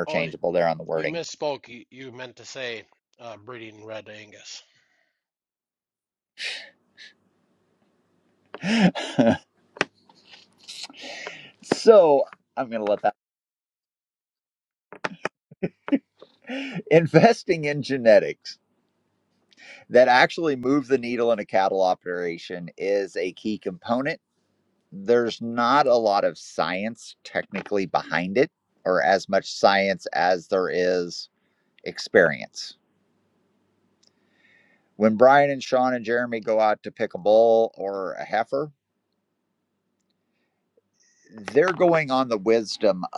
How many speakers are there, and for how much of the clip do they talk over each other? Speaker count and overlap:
two, about 1%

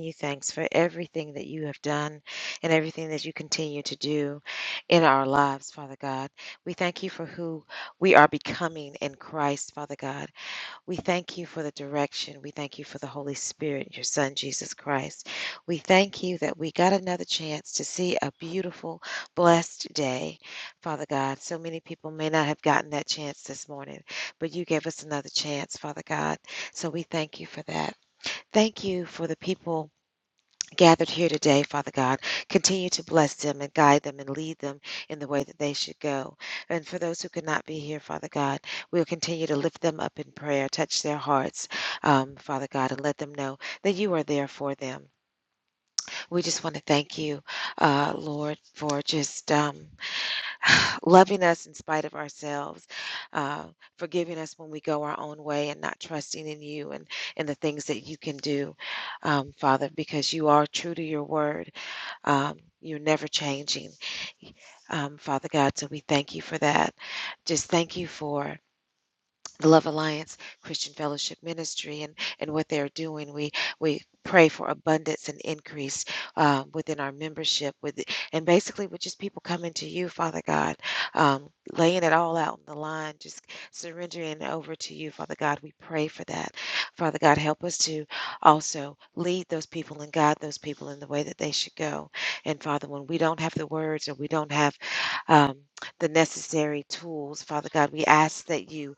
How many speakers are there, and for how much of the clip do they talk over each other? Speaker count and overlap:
one, no overlap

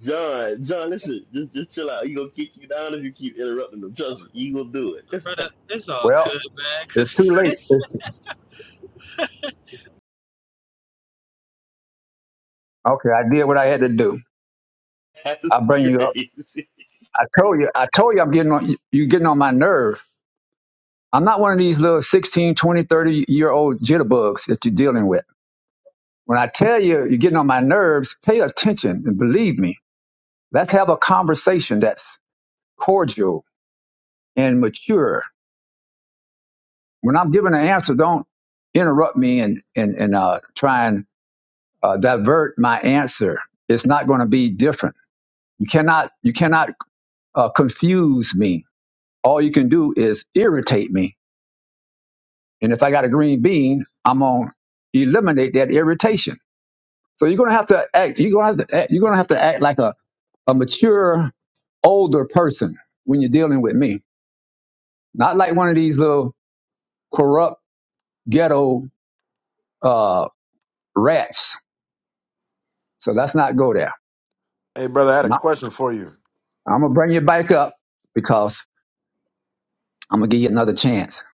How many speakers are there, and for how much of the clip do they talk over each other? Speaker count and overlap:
four, about 2%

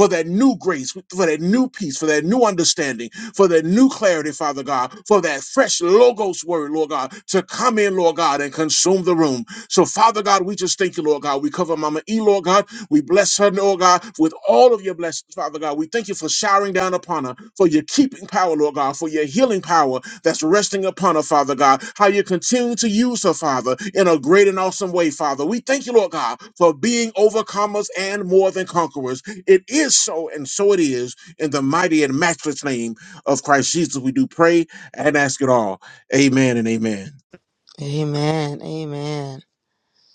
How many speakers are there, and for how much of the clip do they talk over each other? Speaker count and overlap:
two, no overlap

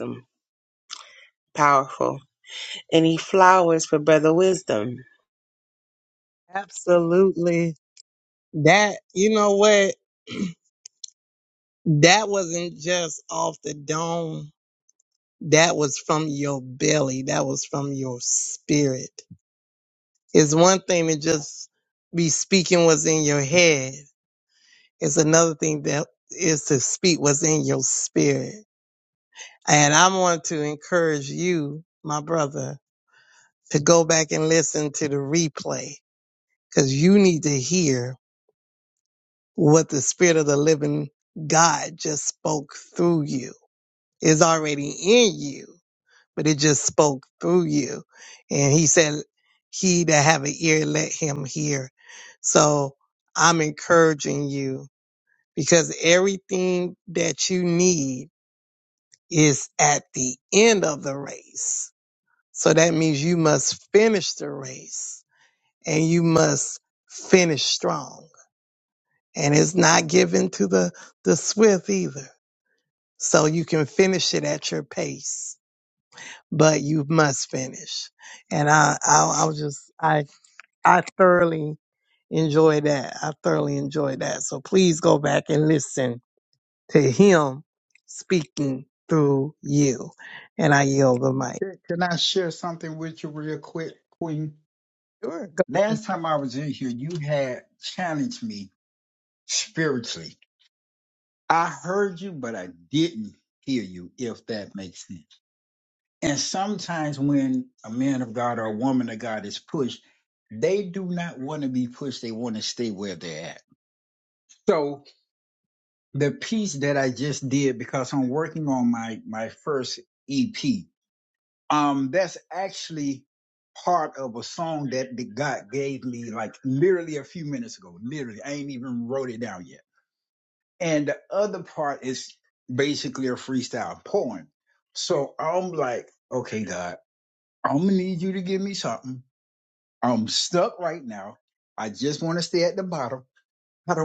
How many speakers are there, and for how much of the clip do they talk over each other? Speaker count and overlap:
three, no overlap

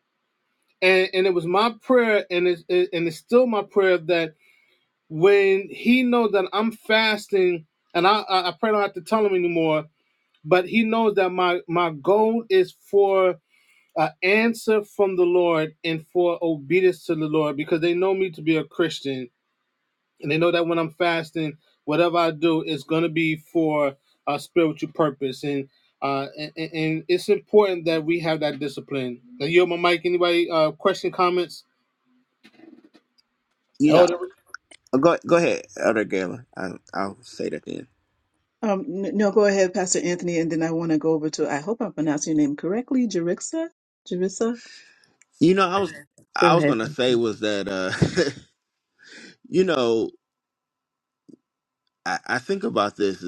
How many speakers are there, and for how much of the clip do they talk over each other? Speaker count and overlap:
three, about 1%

